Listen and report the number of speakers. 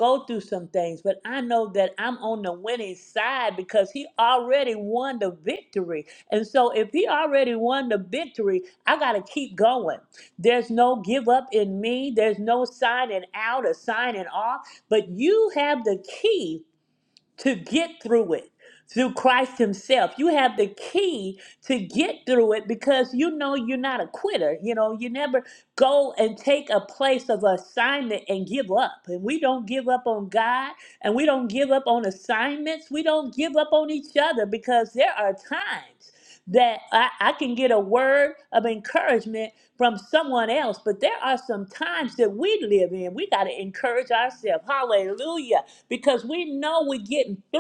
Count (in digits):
1